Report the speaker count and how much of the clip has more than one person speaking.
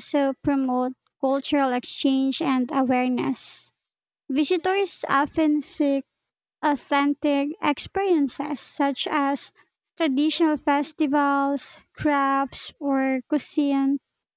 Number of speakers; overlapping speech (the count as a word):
one, no overlap